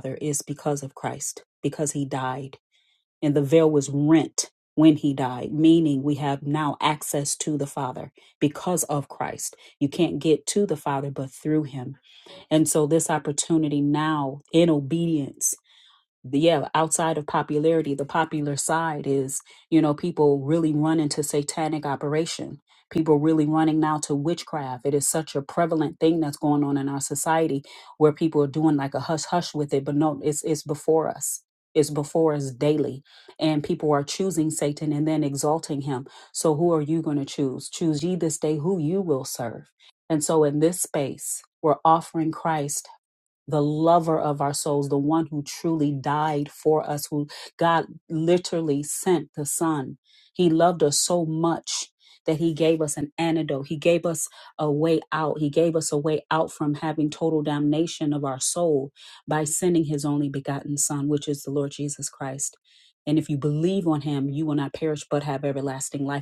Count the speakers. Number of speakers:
1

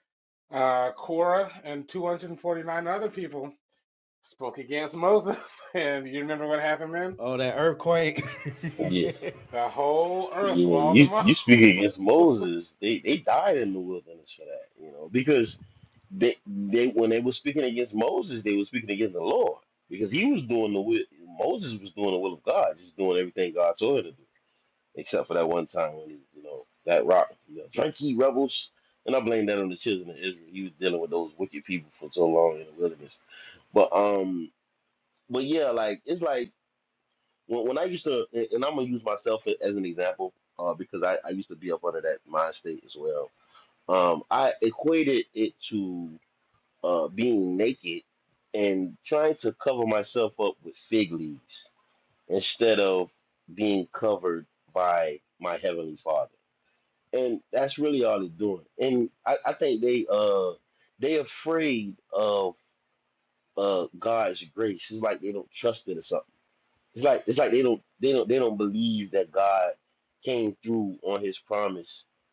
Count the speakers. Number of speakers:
3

